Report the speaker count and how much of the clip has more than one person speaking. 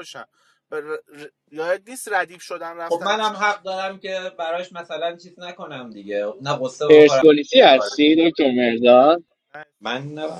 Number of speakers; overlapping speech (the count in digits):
3, about 10%